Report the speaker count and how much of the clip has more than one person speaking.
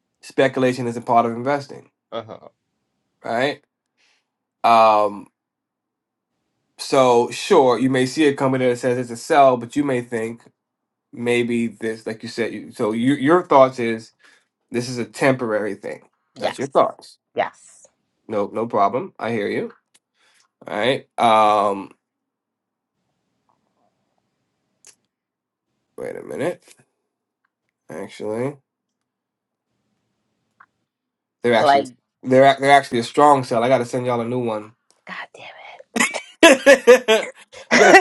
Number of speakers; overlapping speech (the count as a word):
two, about 1%